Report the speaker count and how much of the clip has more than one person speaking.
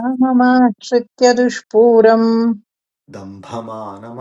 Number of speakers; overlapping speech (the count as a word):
two, no overlap